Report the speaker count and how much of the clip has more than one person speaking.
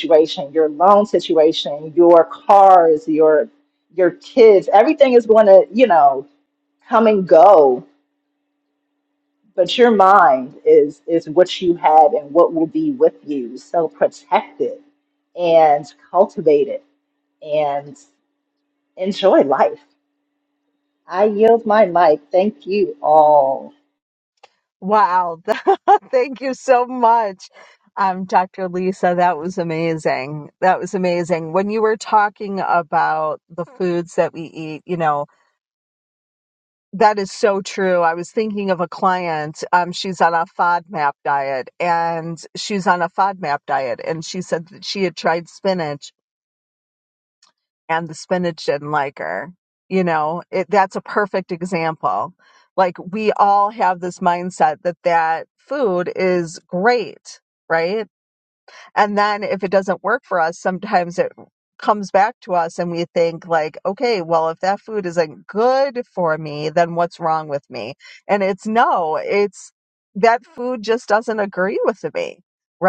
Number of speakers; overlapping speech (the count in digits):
2, no overlap